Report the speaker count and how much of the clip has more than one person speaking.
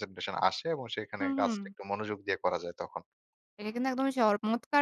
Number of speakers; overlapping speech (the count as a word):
two, about 10%